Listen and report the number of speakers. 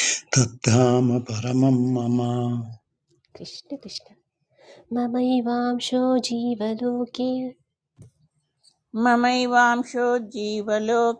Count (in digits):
3